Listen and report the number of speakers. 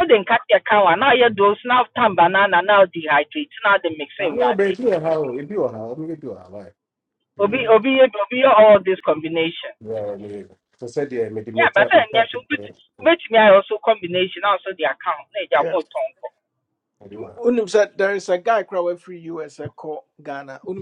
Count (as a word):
three